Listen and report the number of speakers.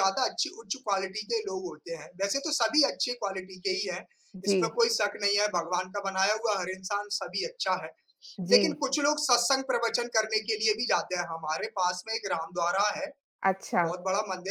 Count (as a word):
two